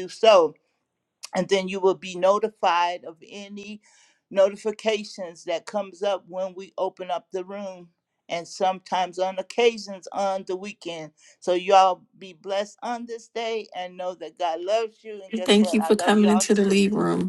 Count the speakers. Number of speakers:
two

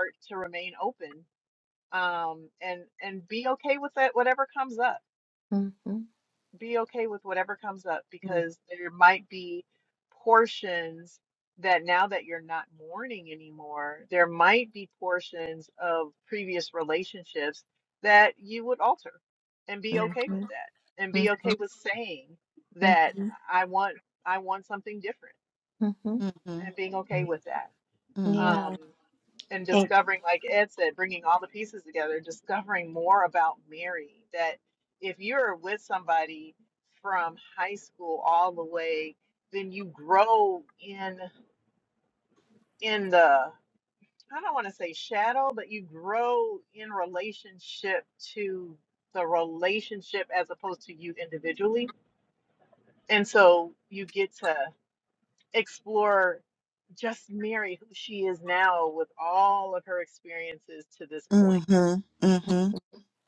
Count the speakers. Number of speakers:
three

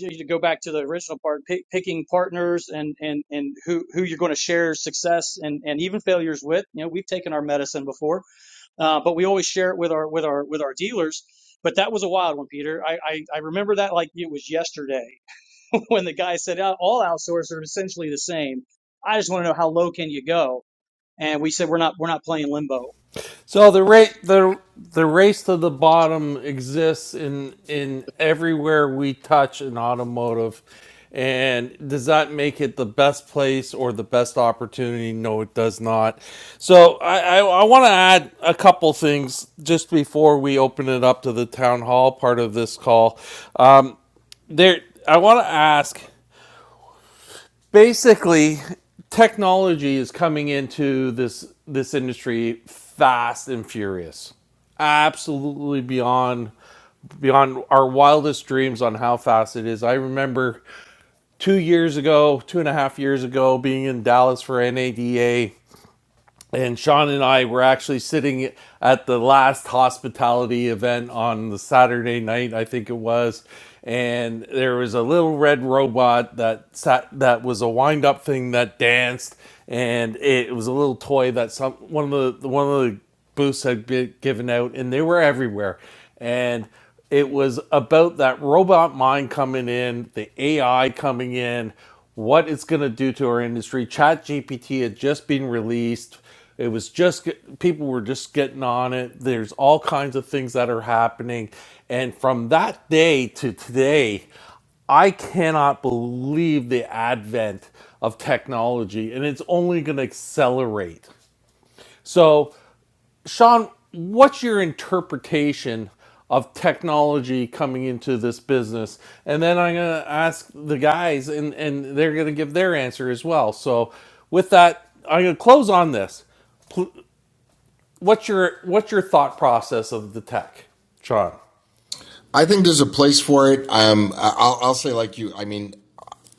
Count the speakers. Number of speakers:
three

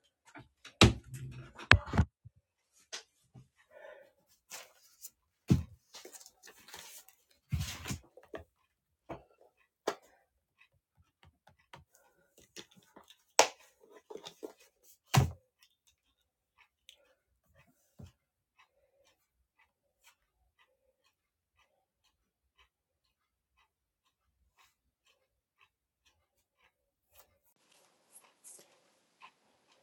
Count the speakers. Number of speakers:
zero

